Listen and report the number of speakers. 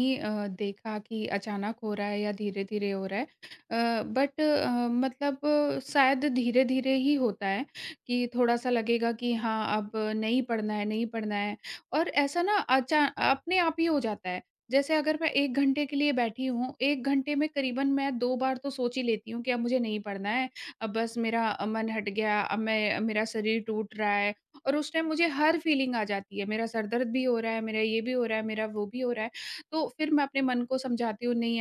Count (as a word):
one